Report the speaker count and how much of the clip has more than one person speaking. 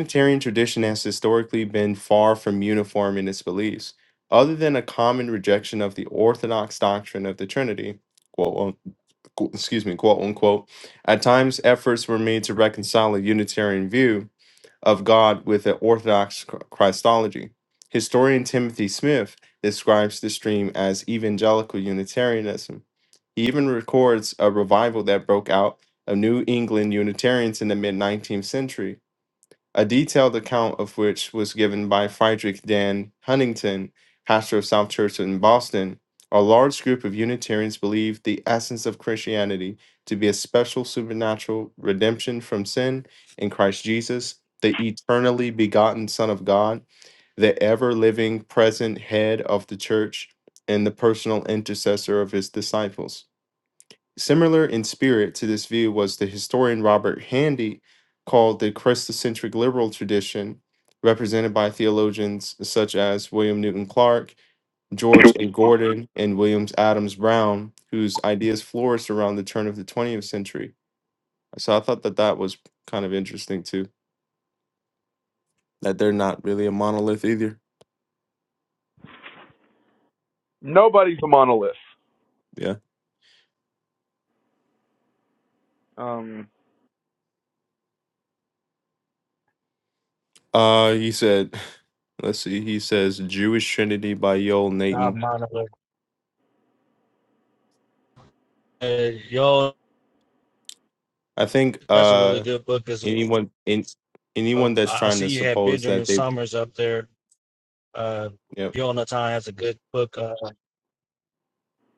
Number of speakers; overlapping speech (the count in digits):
3, about 2%